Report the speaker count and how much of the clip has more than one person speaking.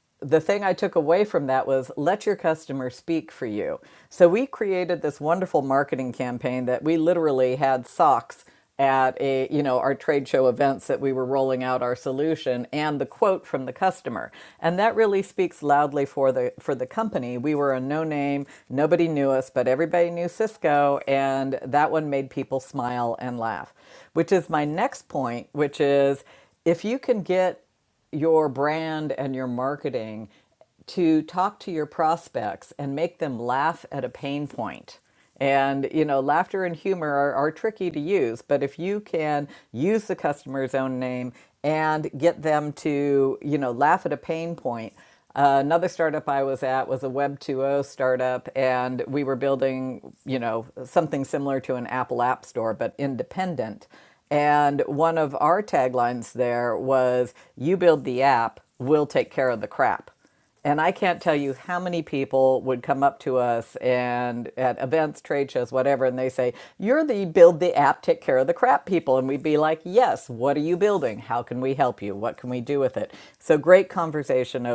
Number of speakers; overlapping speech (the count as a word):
one, no overlap